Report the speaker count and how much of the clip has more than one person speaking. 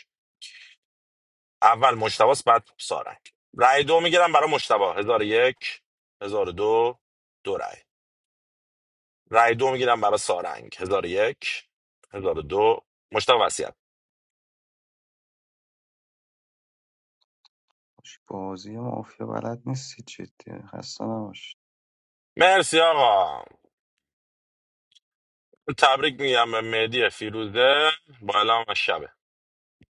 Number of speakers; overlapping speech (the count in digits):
2, no overlap